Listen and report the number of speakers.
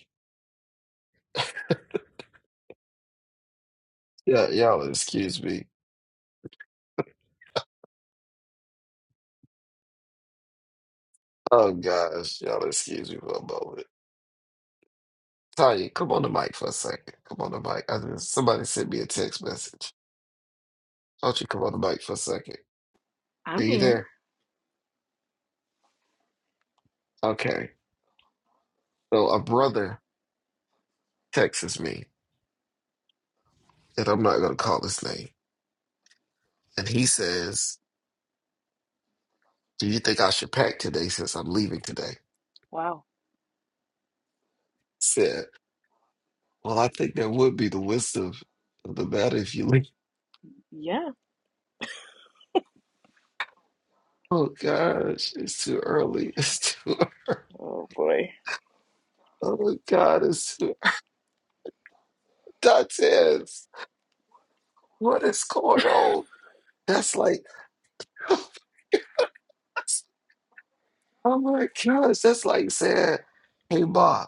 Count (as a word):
two